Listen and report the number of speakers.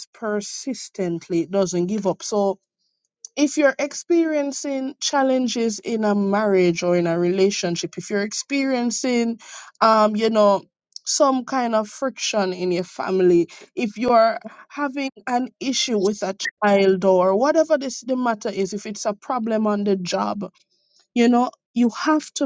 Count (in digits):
1